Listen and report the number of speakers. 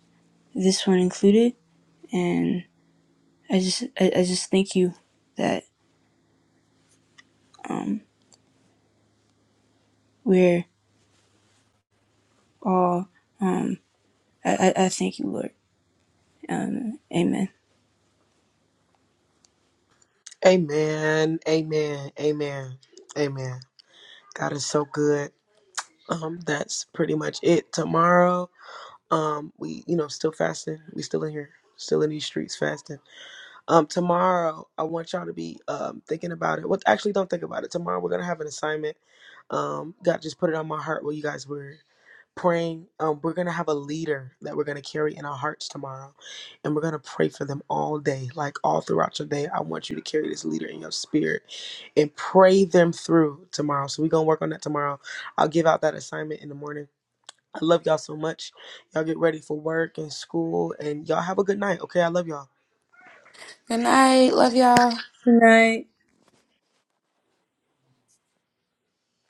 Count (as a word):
three